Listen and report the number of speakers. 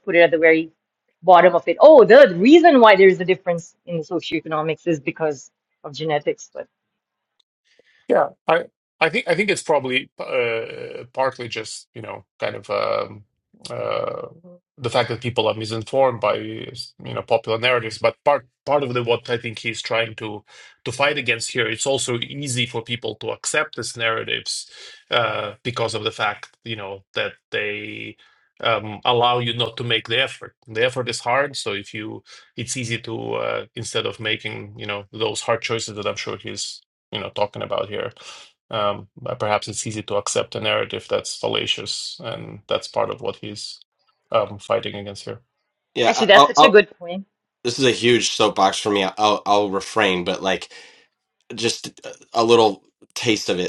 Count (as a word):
three